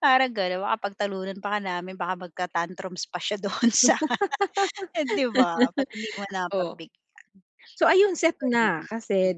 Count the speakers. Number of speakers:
2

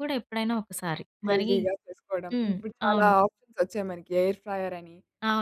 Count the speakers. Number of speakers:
2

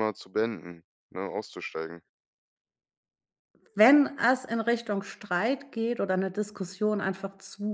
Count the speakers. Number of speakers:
2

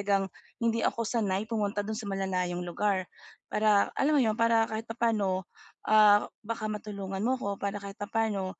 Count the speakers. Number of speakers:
1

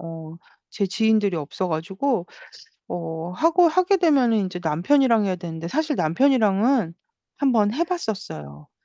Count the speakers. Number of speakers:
1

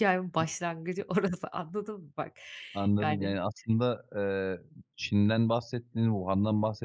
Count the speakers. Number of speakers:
2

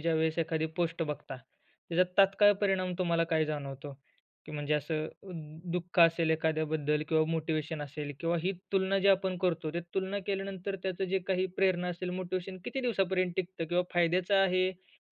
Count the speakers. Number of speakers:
1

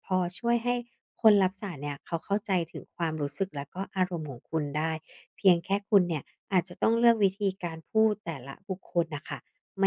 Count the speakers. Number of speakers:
1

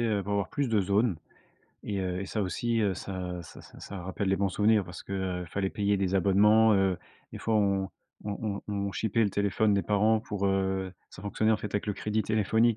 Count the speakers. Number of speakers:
1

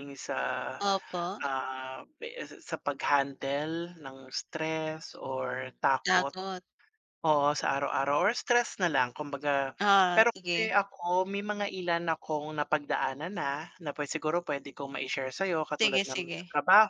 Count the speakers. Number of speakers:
2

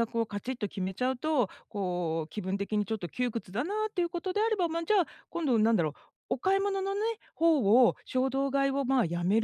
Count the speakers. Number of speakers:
1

